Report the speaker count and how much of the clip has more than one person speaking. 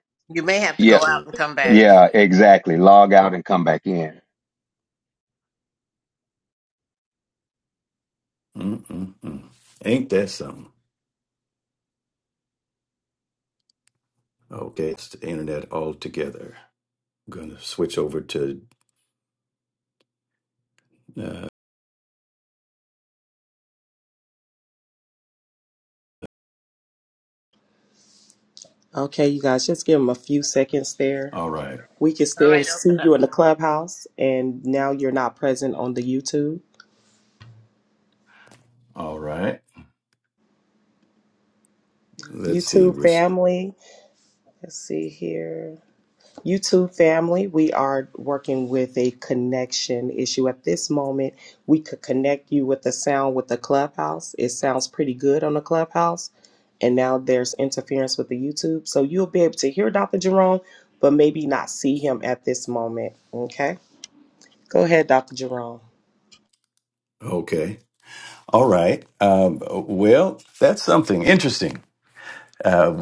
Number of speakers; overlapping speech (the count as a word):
four, about 3%